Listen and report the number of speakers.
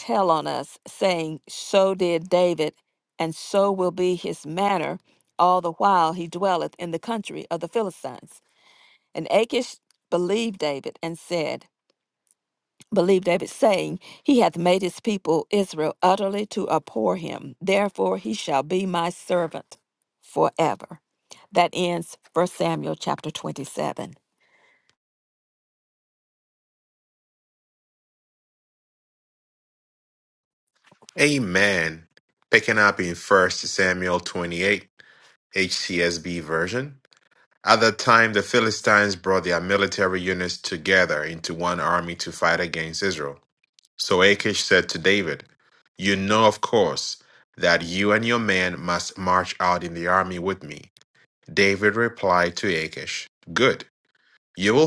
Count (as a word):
two